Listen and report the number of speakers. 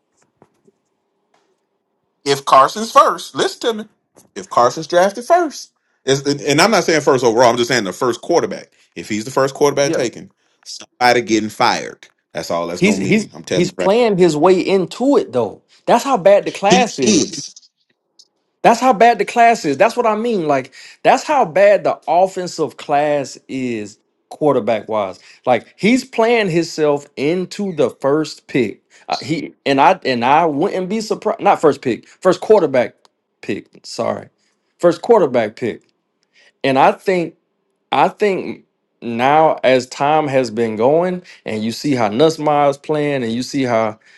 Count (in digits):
2